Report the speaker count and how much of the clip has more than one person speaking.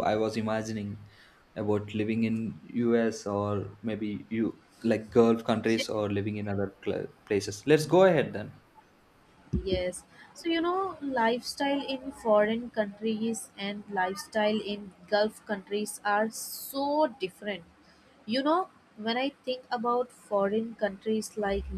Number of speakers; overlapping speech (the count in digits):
2, no overlap